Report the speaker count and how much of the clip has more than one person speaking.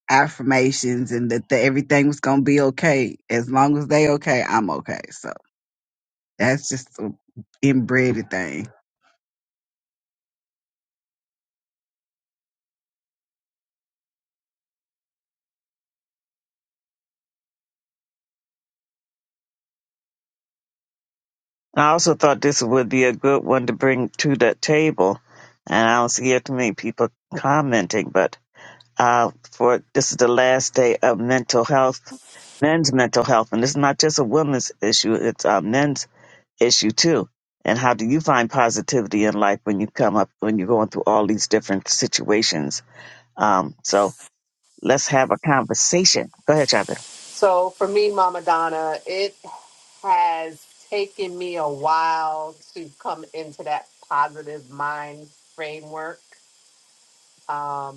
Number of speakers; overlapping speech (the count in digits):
3, no overlap